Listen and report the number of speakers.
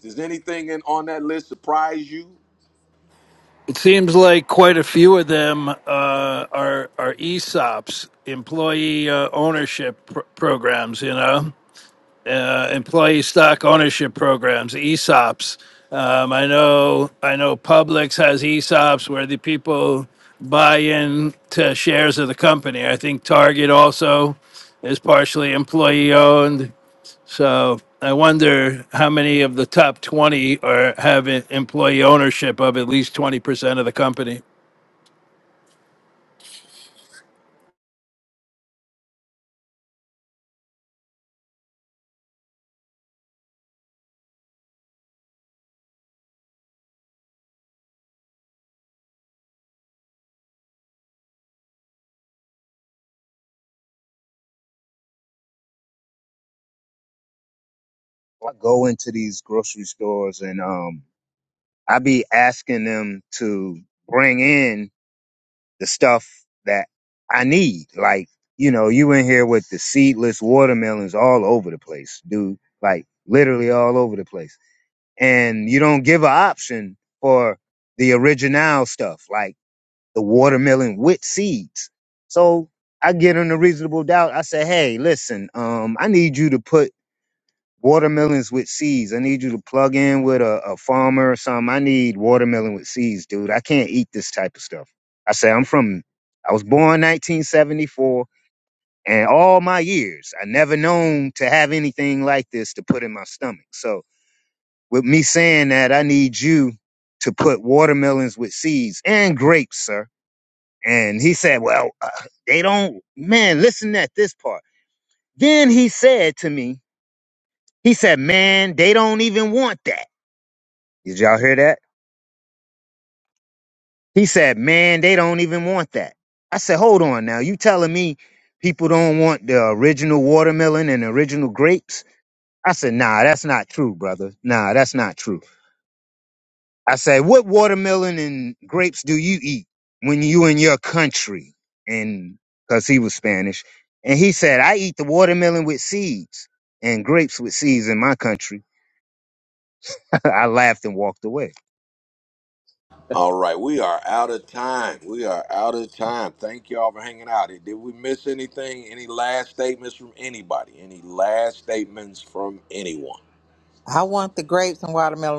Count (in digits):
4